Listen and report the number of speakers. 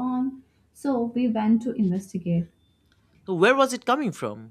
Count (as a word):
two